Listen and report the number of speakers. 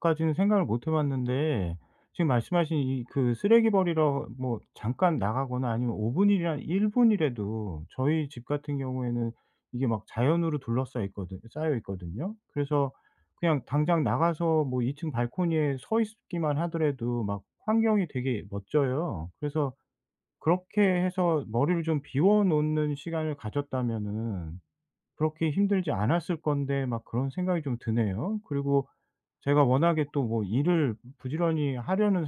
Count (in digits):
1